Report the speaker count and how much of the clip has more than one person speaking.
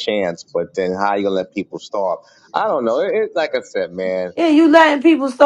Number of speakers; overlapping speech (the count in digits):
2, no overlap